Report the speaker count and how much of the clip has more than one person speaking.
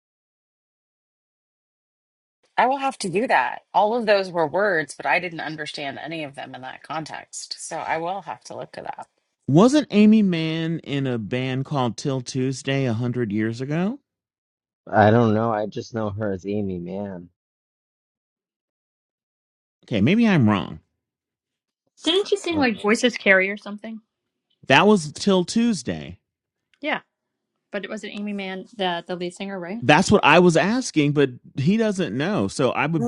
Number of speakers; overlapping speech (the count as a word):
four, about 1%